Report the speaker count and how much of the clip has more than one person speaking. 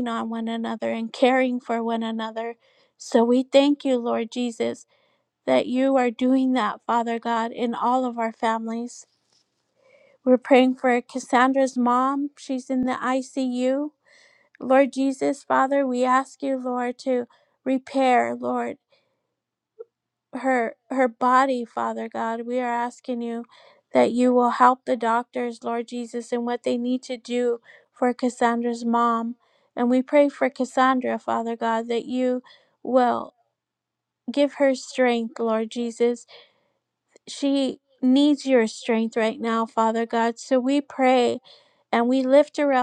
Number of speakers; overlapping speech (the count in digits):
1, no overlap